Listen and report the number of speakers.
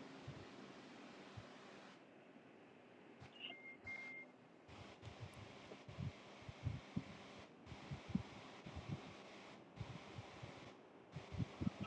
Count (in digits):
0